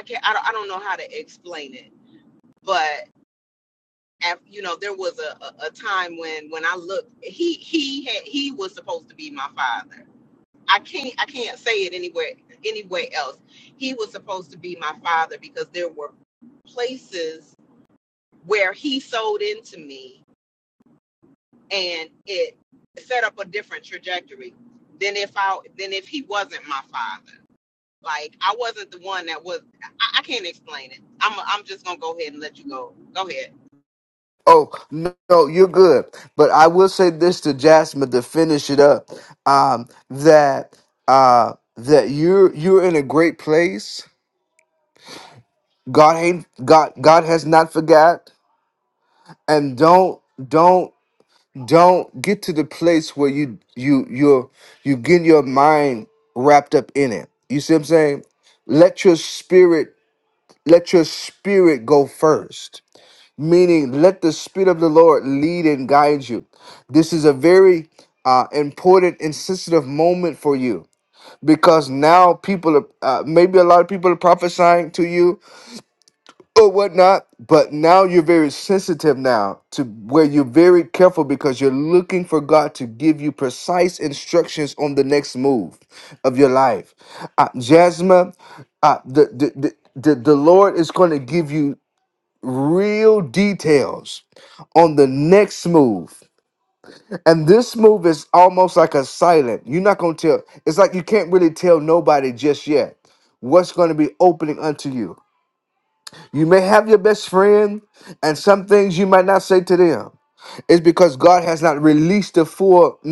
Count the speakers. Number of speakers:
2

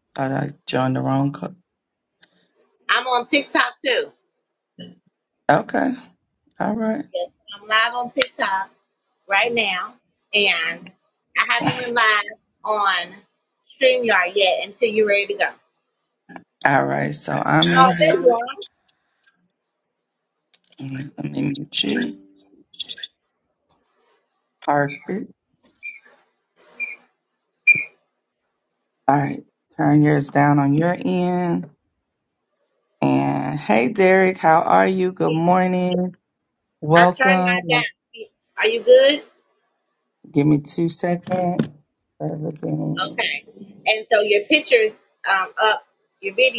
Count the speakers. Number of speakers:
2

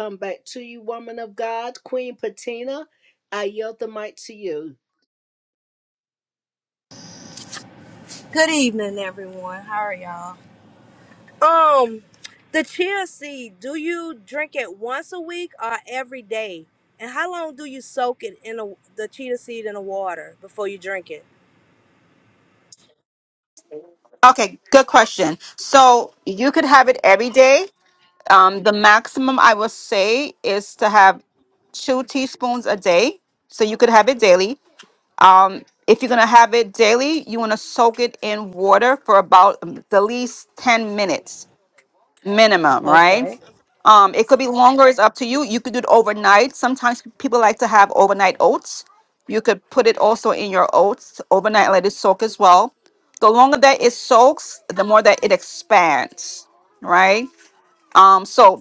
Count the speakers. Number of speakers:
3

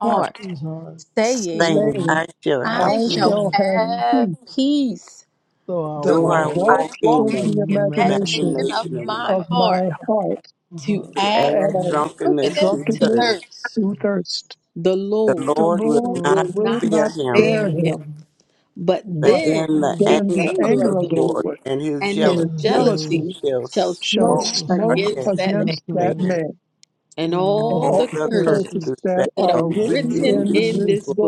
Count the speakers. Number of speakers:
4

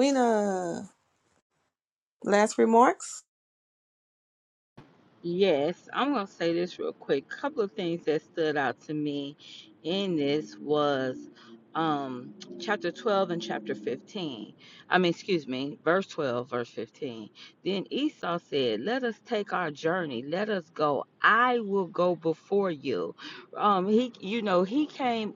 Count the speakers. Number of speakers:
2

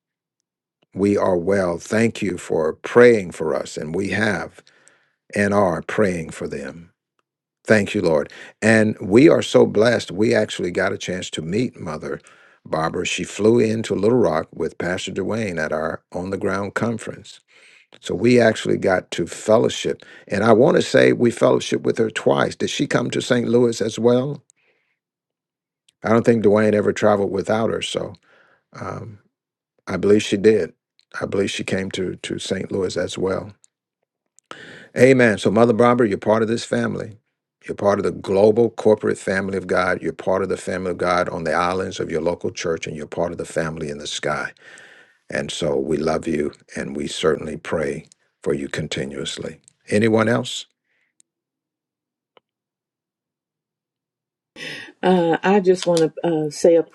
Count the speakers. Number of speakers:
2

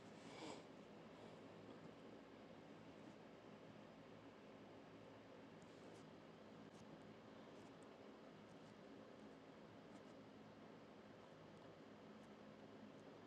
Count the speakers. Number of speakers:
0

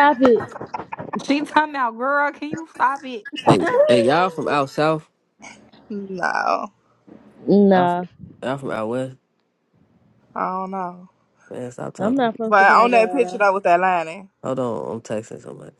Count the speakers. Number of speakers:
4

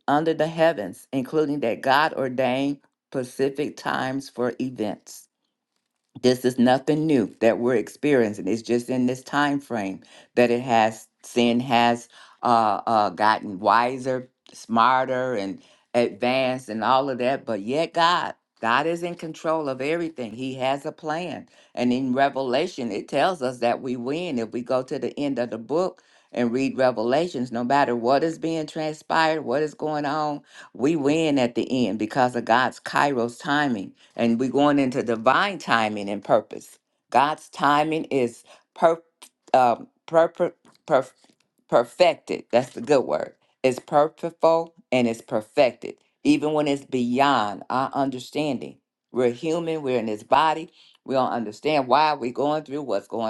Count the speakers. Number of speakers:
1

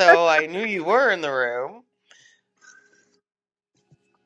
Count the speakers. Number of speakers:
1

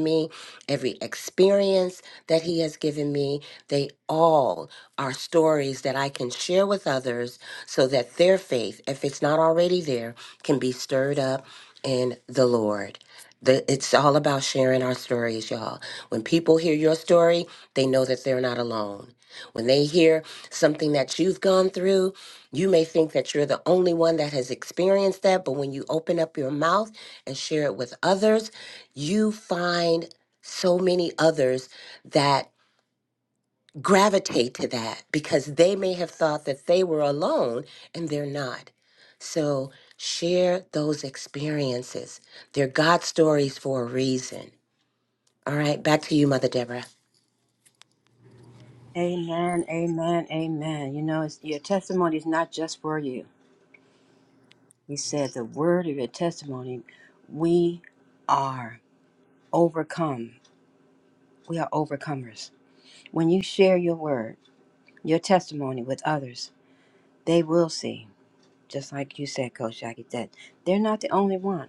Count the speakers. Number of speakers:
2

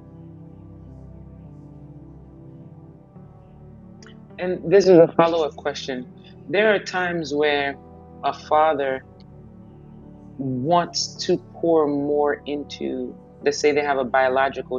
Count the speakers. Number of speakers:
1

